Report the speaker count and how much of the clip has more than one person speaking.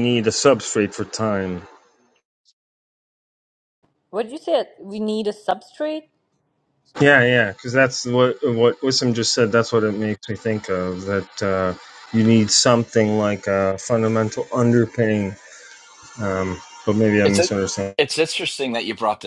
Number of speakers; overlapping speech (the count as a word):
three, about 1%